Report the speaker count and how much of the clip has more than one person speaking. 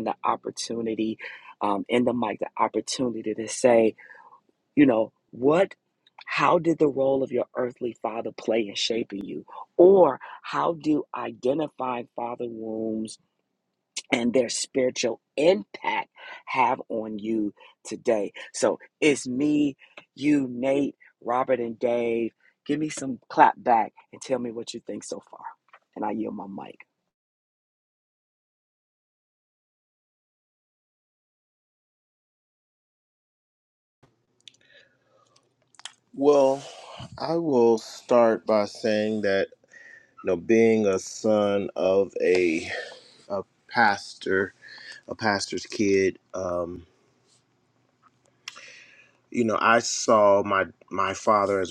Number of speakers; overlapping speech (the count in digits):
2, no overlap